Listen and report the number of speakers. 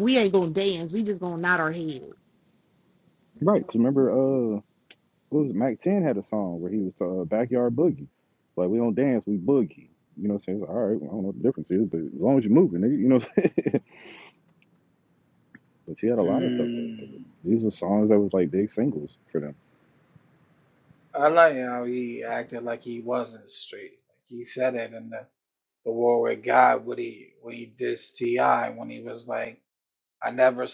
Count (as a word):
three